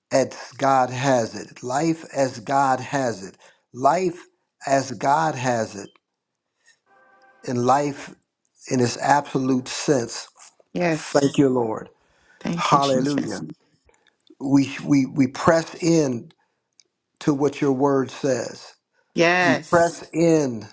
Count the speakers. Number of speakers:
two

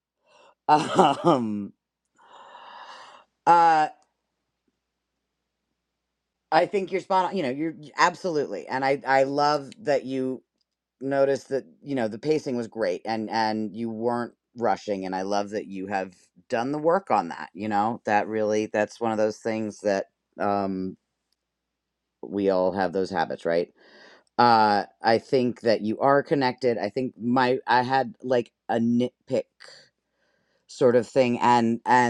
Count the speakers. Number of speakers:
one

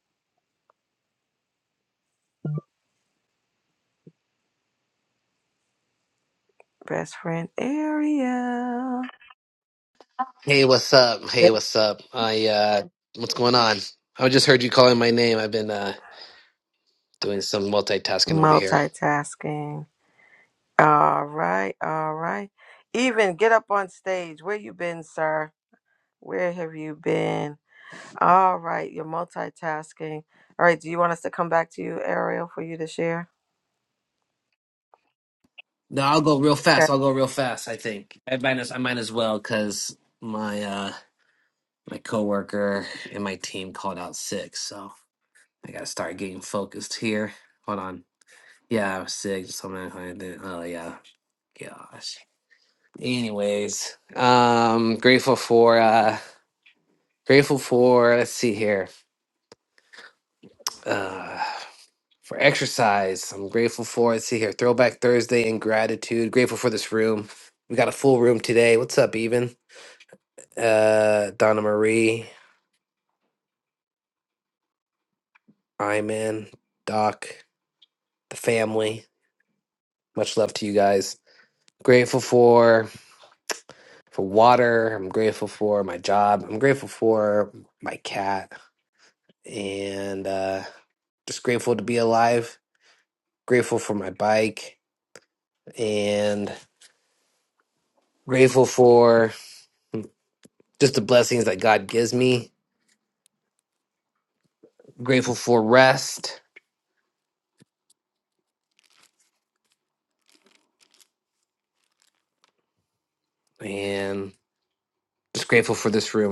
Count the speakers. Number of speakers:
two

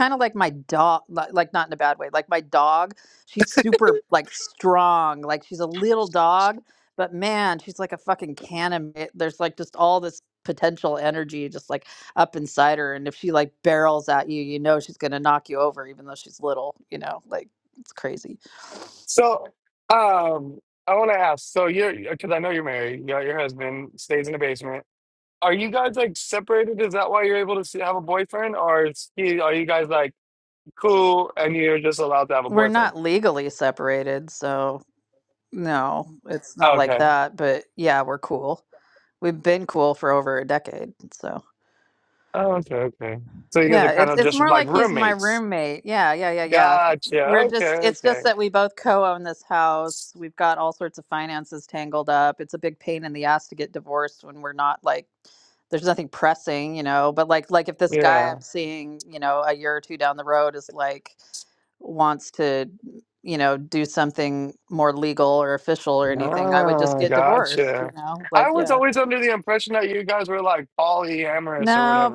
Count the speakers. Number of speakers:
two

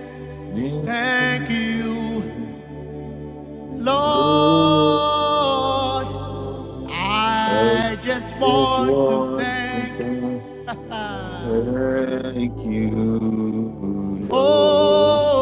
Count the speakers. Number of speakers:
two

